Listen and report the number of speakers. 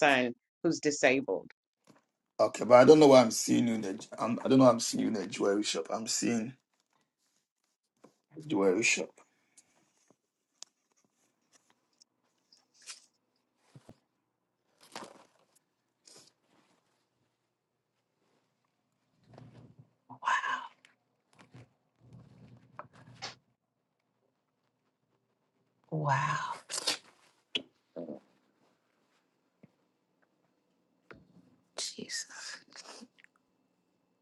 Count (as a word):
three